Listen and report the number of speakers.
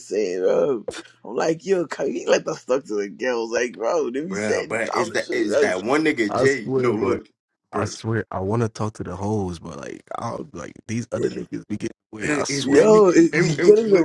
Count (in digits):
3